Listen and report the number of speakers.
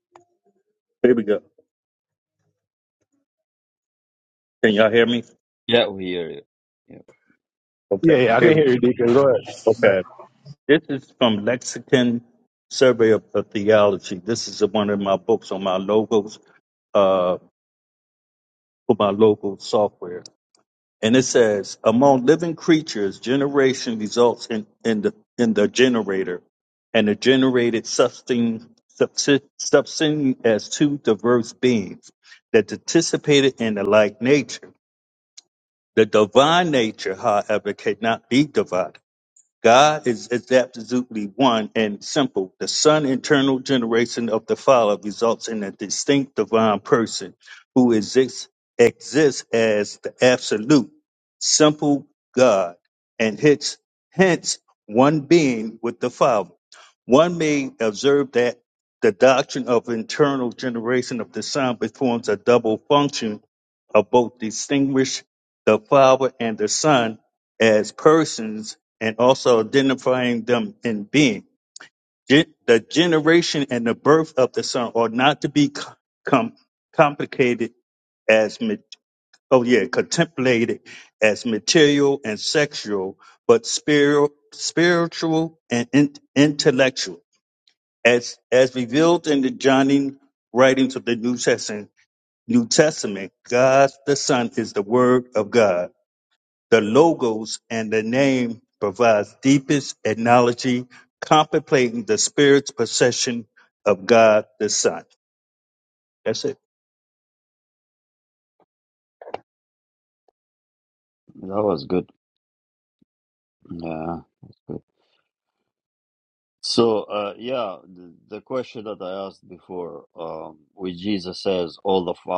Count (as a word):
three